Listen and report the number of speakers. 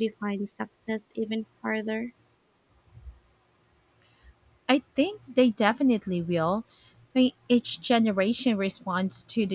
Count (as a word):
two